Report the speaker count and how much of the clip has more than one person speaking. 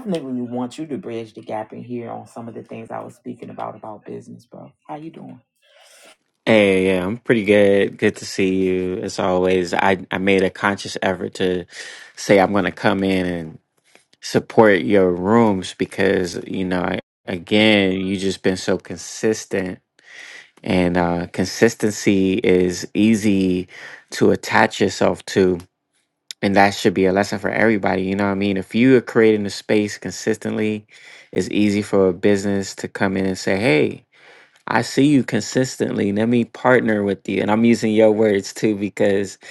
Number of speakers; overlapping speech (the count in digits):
2, no overlap